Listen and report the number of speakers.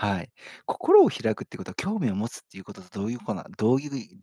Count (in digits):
1